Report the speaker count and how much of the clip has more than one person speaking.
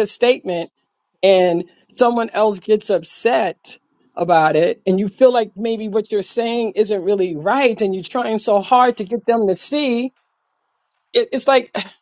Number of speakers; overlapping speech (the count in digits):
1, no overlap